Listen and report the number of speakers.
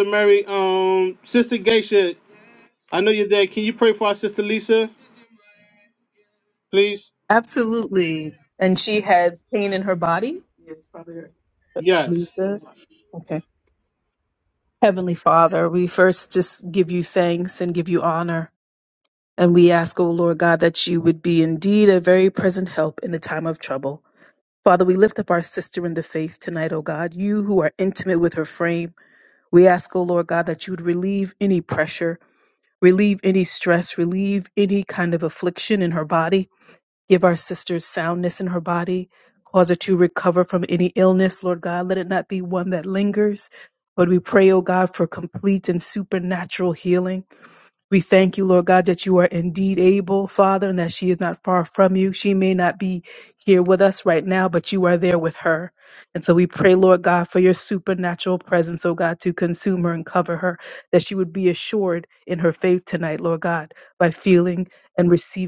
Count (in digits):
2